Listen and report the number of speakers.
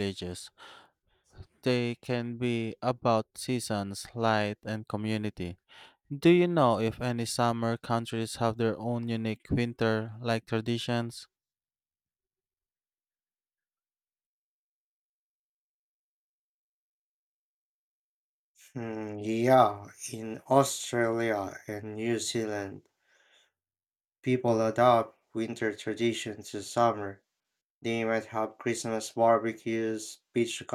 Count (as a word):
two